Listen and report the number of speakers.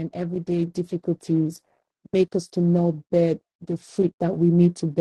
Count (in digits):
1